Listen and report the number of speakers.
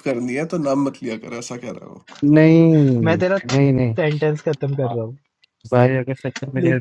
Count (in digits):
3